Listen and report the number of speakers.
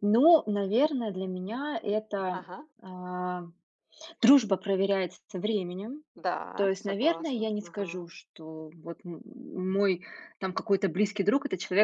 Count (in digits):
2